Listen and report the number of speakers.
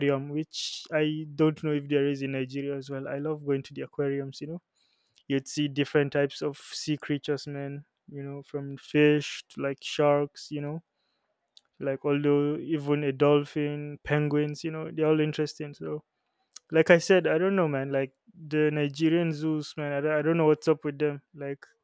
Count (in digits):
1